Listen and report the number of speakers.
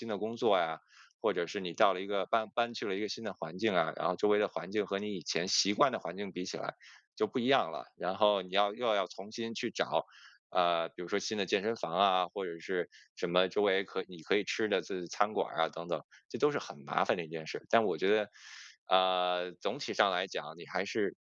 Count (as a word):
one